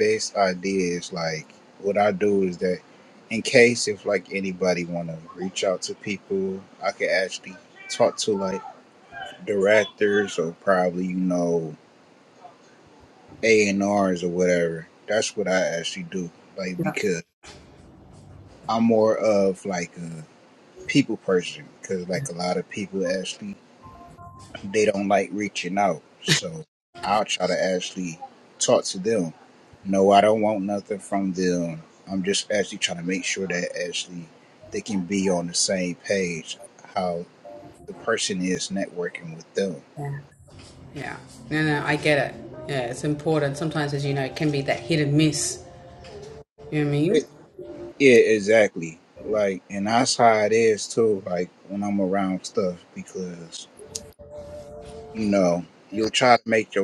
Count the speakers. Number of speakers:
two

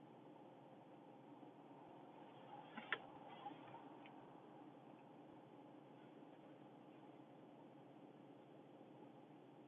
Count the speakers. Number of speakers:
zero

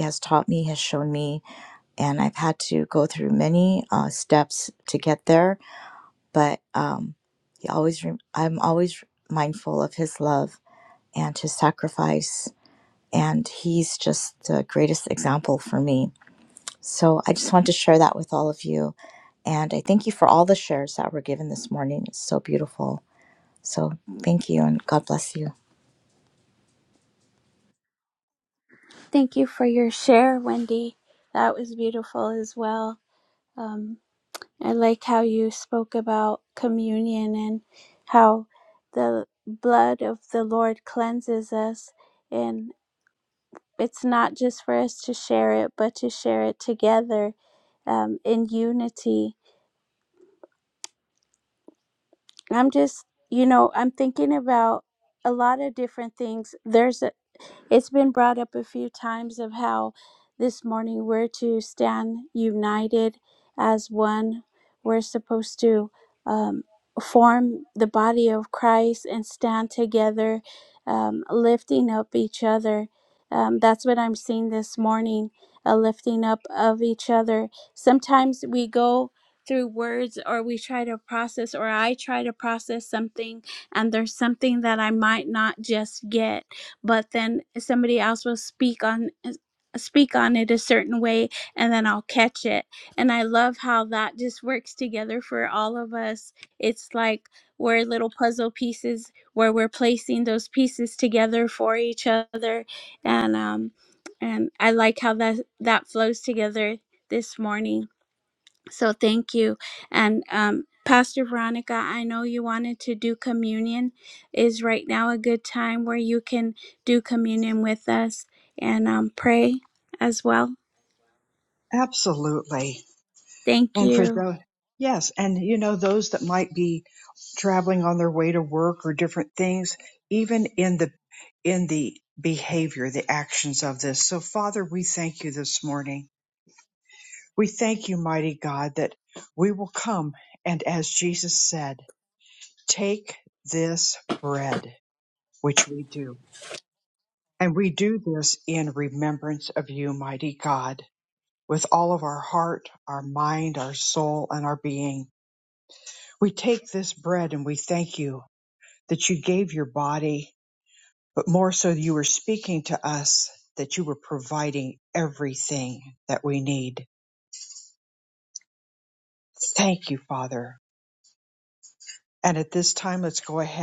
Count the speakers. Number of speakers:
three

